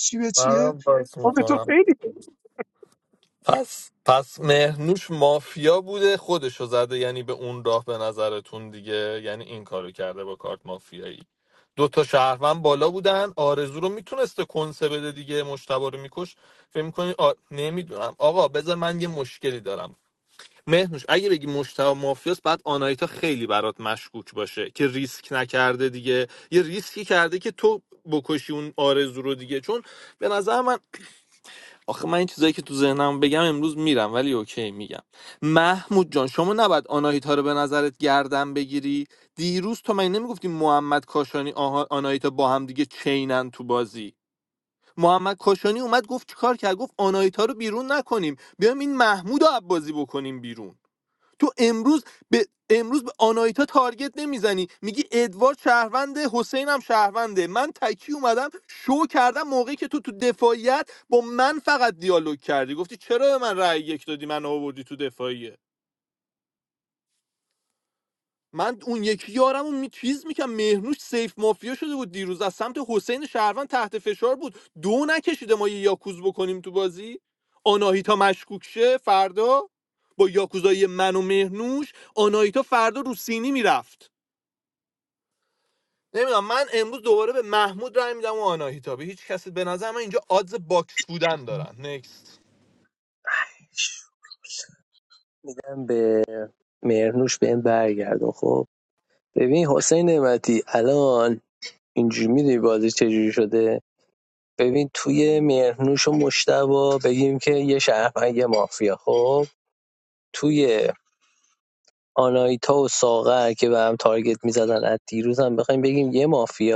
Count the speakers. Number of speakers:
three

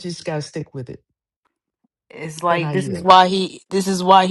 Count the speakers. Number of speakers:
two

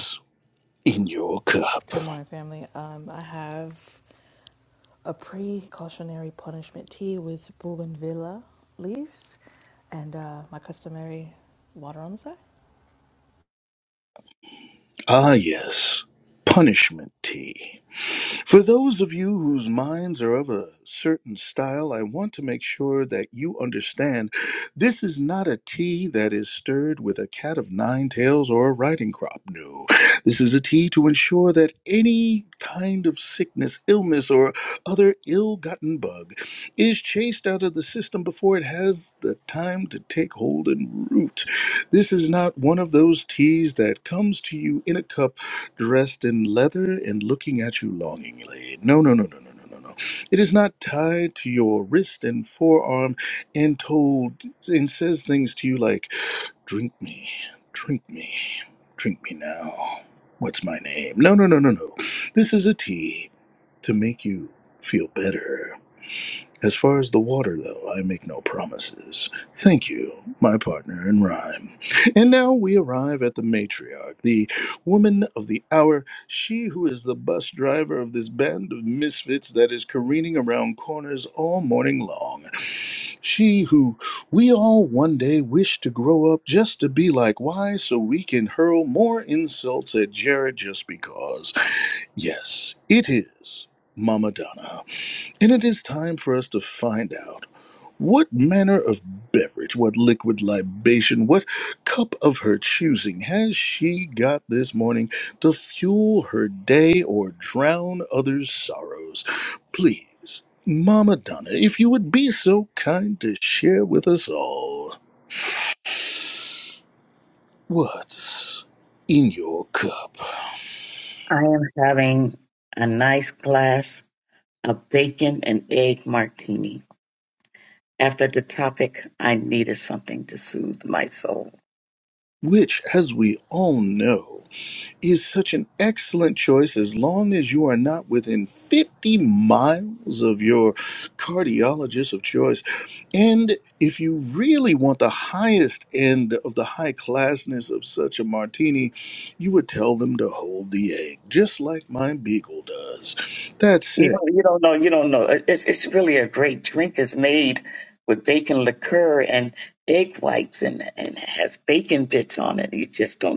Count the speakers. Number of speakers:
three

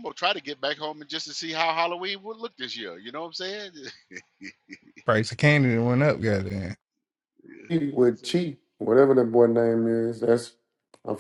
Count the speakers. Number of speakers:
three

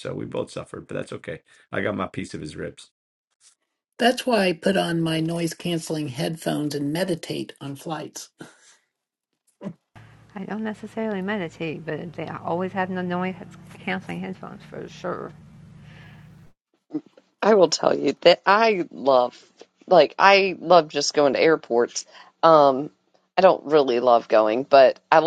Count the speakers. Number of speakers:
four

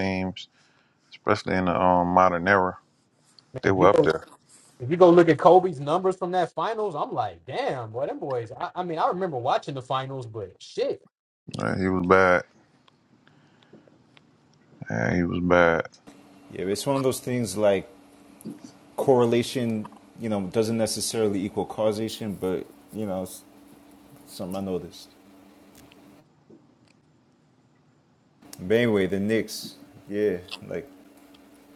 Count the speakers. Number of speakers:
three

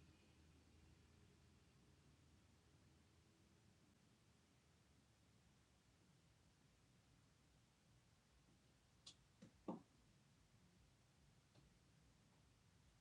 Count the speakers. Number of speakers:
zero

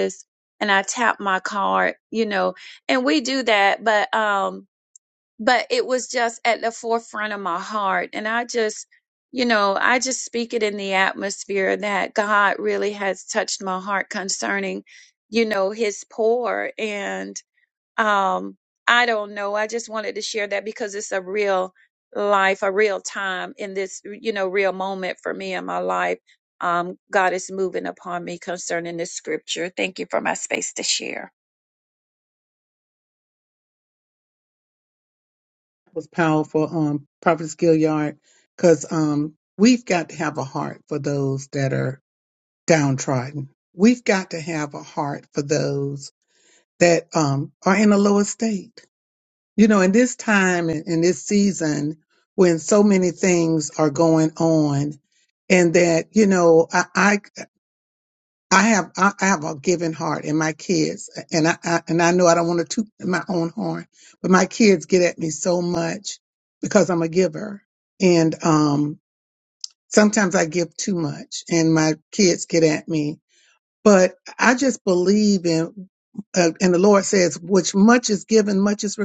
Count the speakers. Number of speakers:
two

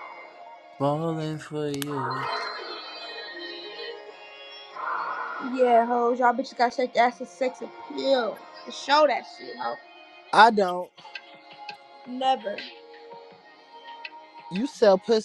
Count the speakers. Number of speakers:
three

